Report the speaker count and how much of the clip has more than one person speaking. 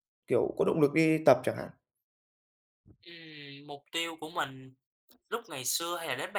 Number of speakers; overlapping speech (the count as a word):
two, no overlap